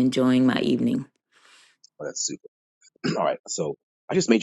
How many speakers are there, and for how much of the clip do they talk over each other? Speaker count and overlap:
two, no overlap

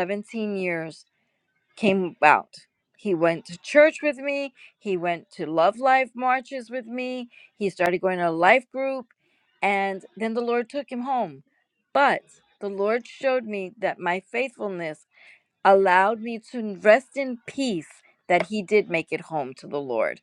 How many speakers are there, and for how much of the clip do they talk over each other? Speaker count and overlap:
one, no overlap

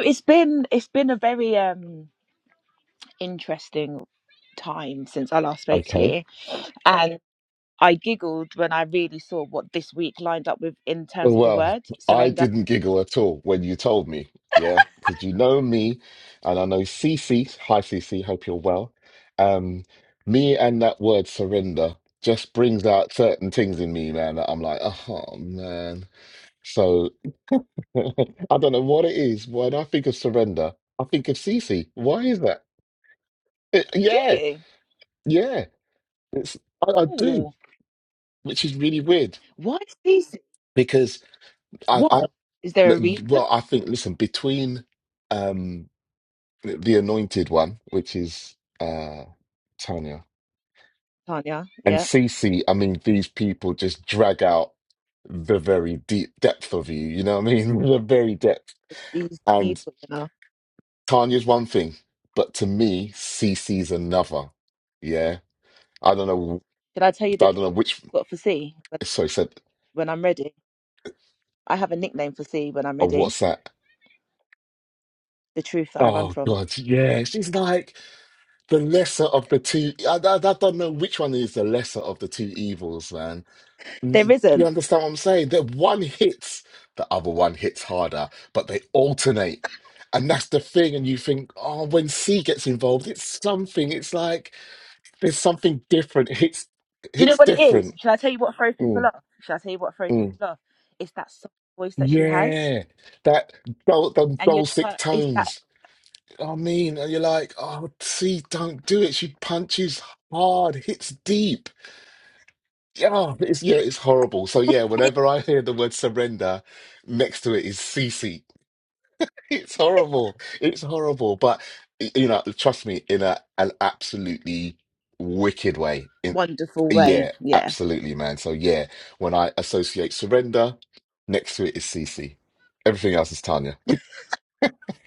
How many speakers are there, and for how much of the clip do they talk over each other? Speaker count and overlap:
two, about 6%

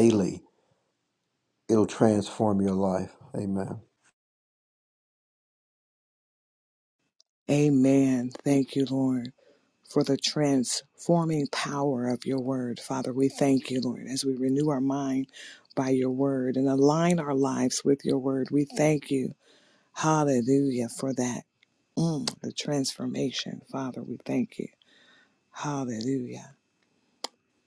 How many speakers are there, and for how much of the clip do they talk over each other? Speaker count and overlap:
two, no overlap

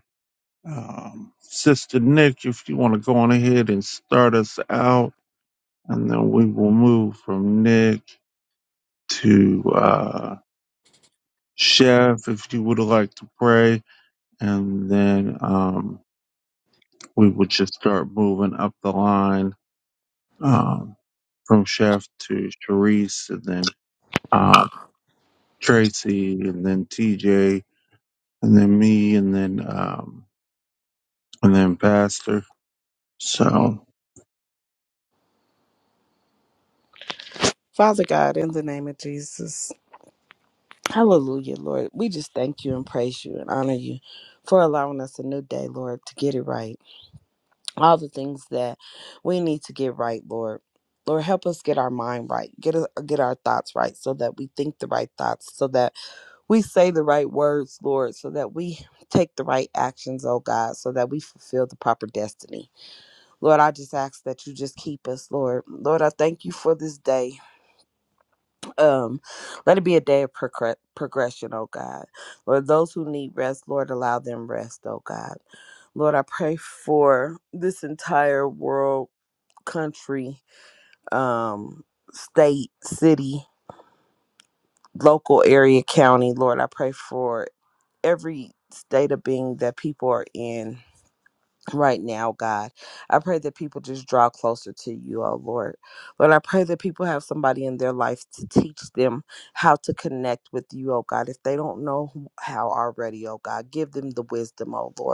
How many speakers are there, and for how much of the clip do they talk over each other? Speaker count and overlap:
two, no overlap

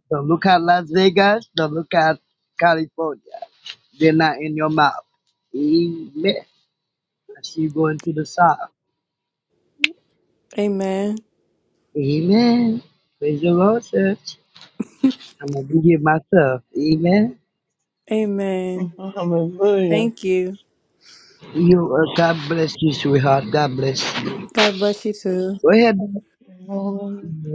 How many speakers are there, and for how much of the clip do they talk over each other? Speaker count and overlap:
three, about 1%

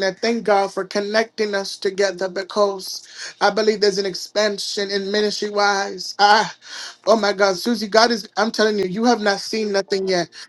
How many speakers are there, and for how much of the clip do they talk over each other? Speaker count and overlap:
one, no overlap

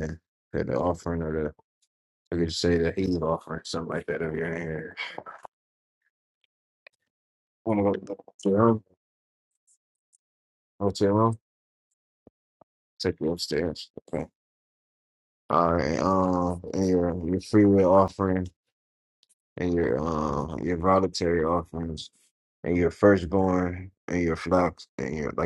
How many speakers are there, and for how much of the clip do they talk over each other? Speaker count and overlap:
one, no overlap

